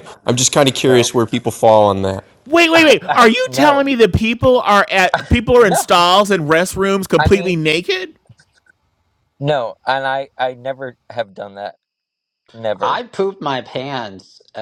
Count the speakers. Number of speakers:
4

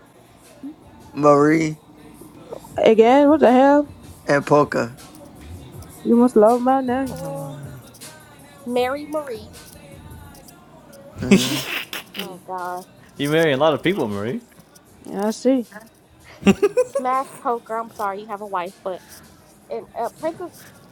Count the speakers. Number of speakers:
4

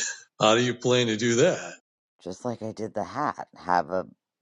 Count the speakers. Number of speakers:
2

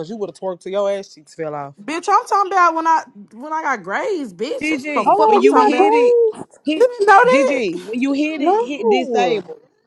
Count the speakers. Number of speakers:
3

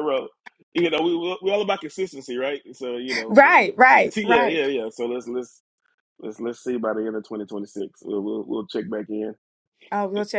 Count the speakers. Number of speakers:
2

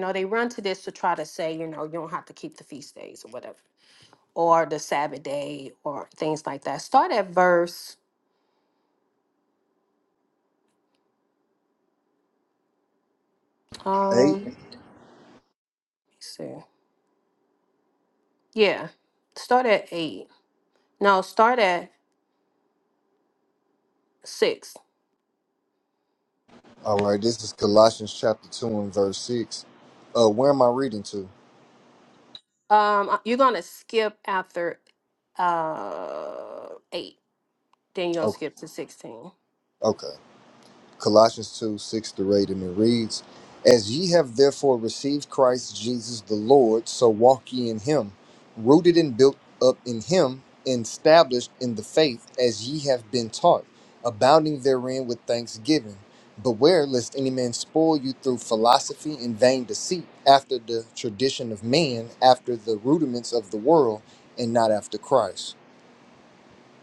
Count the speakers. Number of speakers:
2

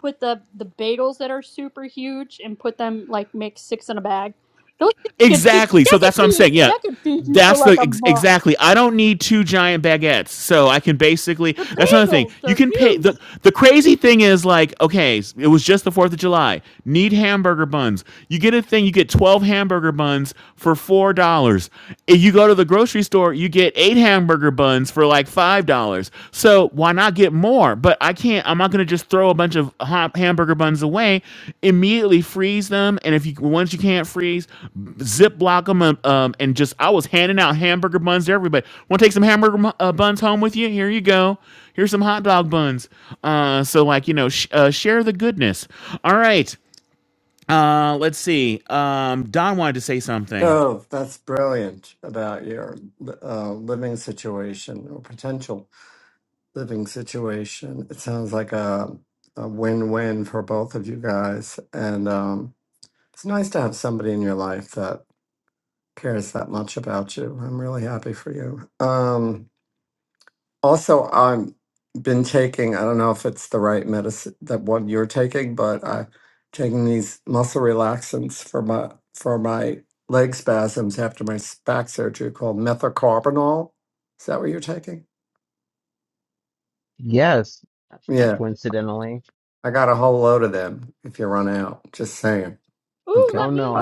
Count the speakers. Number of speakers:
4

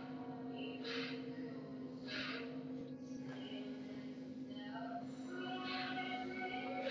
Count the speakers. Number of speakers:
0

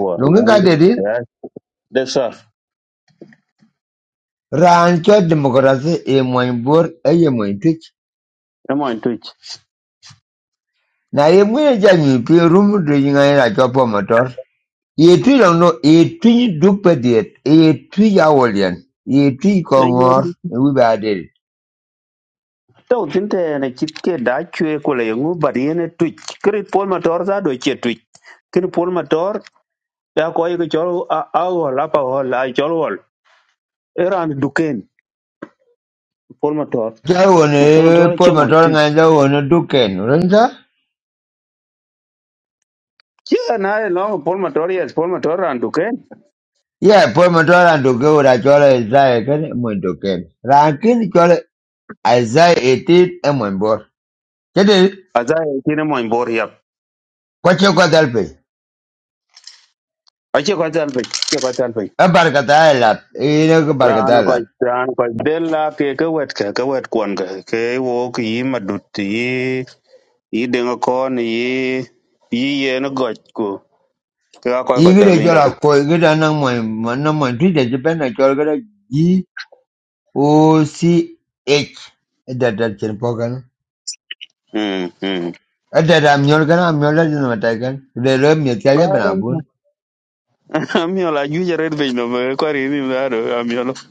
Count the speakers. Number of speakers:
2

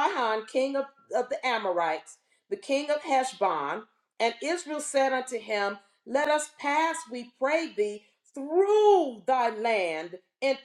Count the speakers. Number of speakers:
1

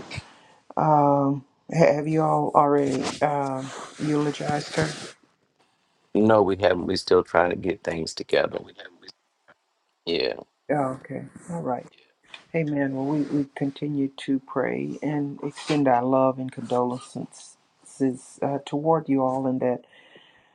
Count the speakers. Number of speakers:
2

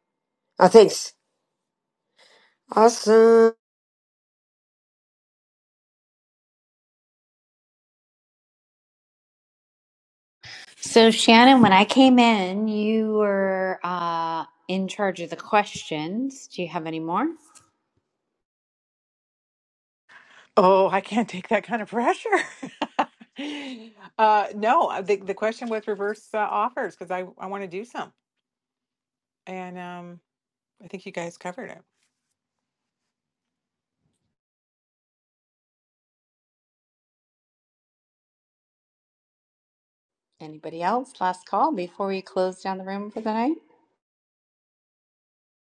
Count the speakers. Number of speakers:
3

